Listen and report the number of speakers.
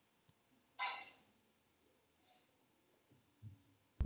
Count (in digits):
0